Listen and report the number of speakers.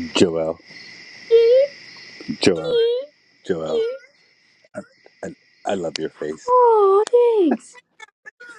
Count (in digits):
2